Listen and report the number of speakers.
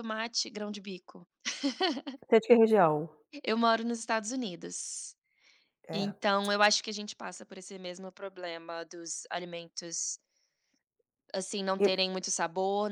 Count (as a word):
two